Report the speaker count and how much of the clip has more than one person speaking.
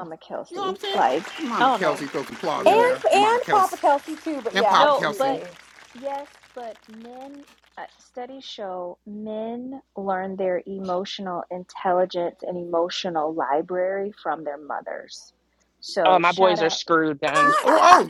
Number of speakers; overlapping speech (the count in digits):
4, about 26%